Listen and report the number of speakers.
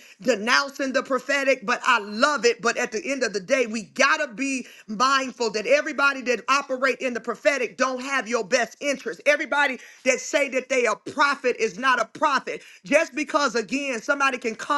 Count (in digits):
1